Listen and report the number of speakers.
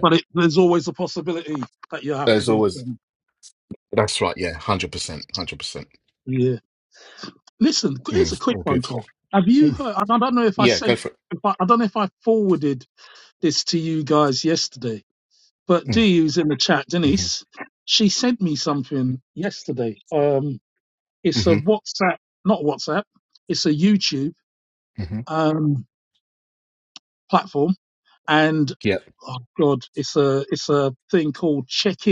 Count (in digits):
2